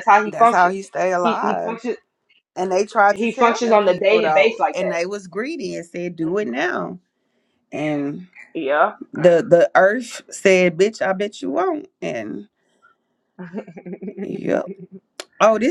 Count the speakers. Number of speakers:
2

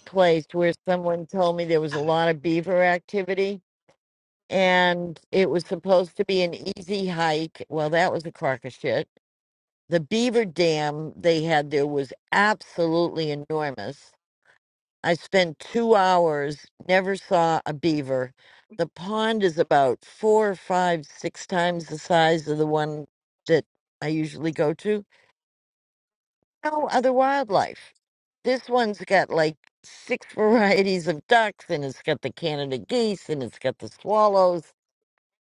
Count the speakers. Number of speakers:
1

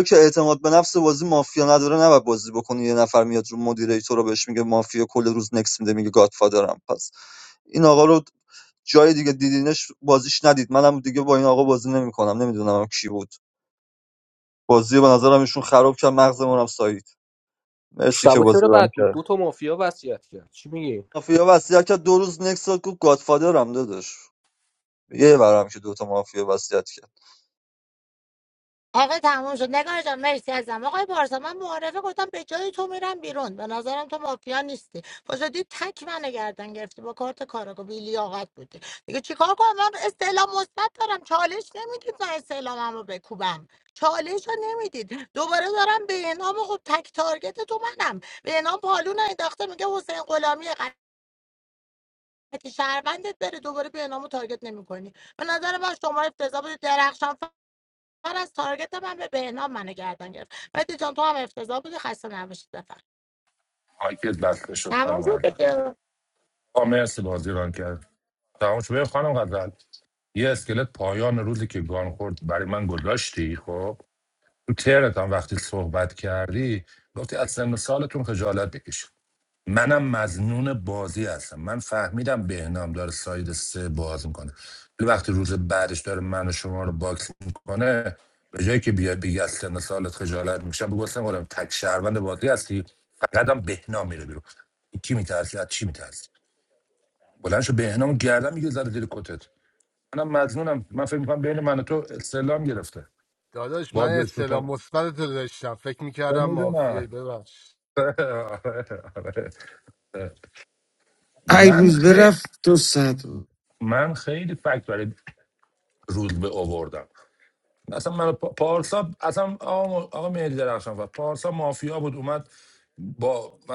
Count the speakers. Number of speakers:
6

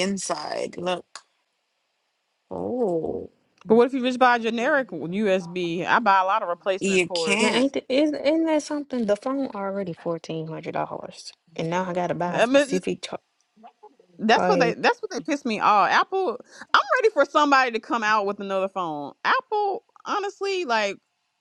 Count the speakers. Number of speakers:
3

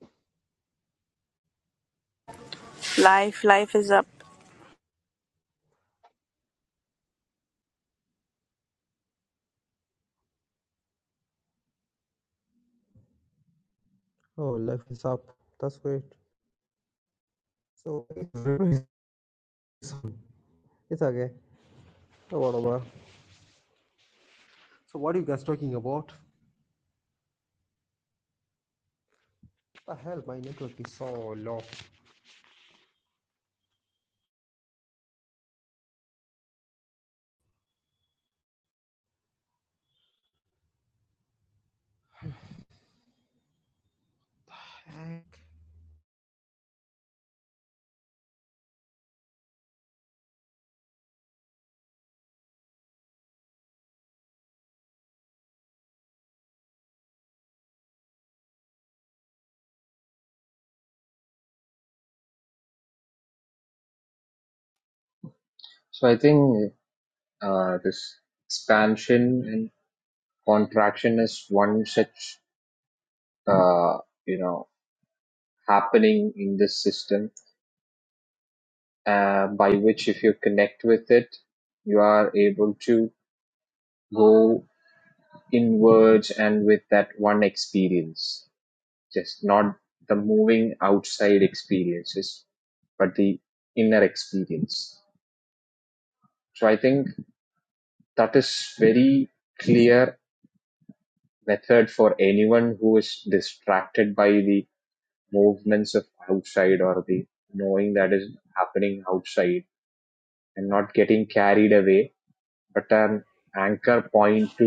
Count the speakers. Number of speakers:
3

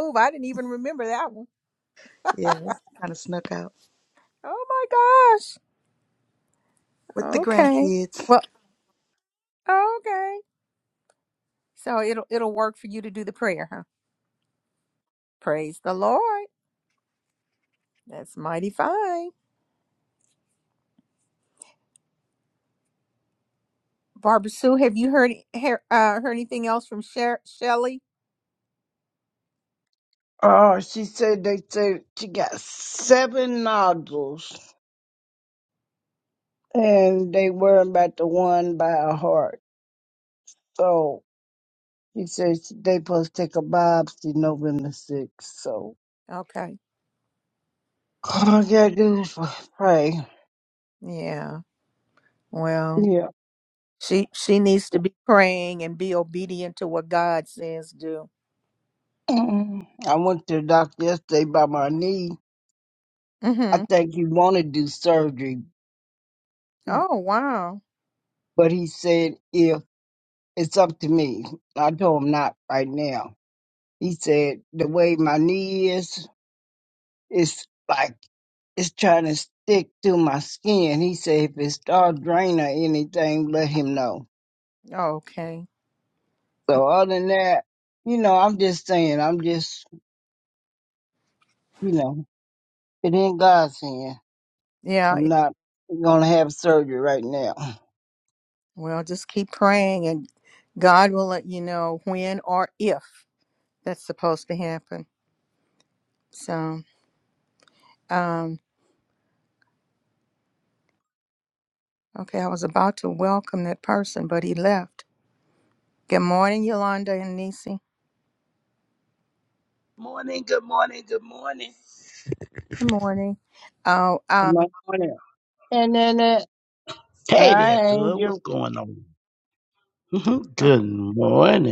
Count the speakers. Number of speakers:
4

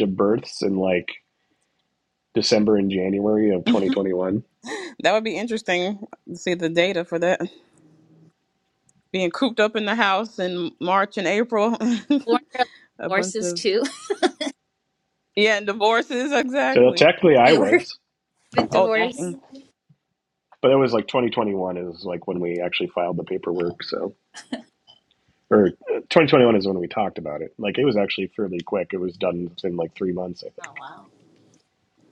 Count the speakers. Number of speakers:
3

